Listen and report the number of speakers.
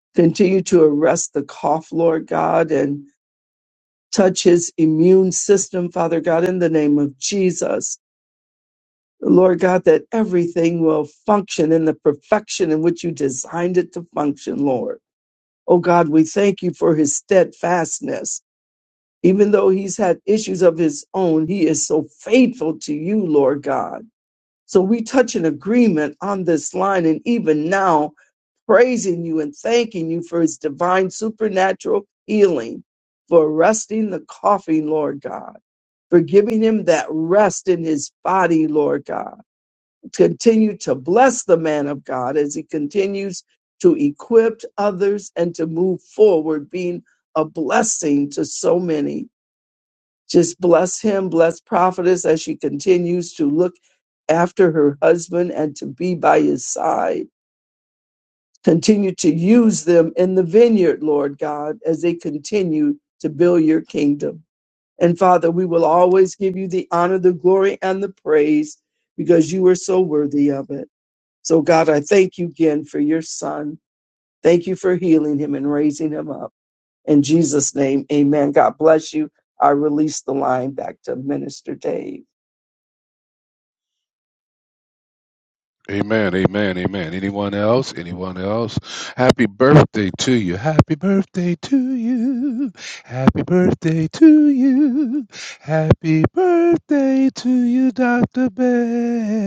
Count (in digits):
2